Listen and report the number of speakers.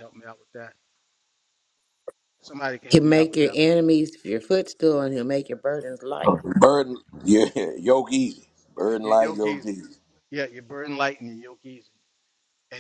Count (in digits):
3